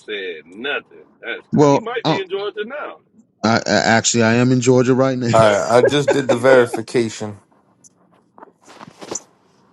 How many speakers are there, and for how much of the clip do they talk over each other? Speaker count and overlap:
three, about 16%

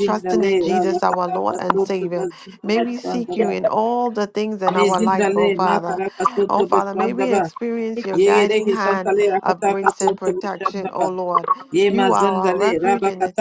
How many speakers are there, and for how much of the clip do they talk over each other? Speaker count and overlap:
two, about 72%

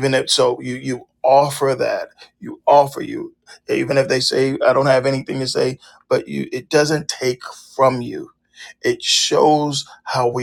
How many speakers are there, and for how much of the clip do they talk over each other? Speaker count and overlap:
one, no overlap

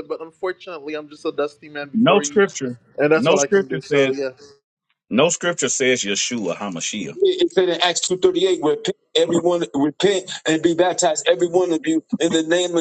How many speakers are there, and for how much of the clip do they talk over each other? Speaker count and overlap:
three, about 11%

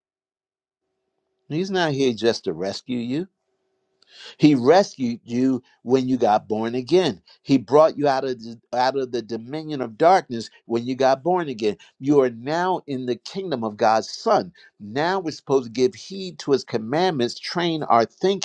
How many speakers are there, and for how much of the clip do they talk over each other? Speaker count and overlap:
one, no overlap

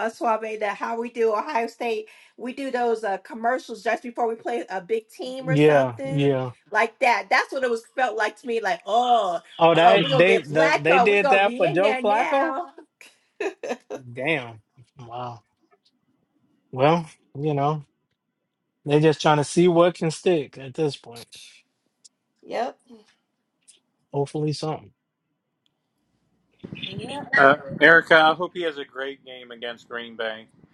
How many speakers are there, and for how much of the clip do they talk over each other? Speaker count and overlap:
three, about 12%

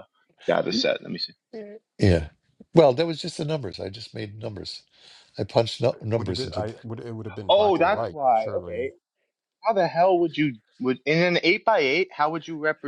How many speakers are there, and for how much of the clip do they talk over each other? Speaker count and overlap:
three, about 14%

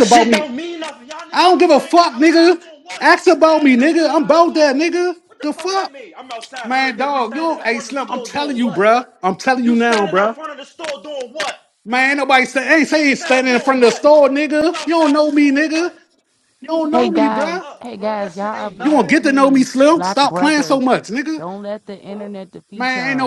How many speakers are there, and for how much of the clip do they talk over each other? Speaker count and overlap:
three, about 59%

